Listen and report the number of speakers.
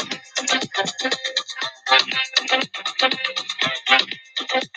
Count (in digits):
0